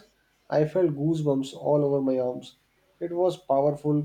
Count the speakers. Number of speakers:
1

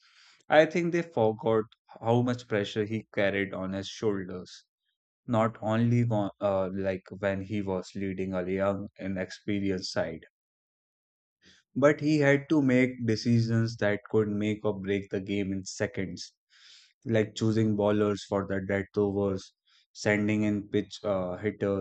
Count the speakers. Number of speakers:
1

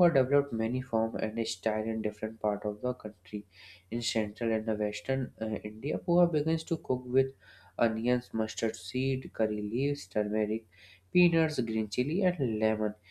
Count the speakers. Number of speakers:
1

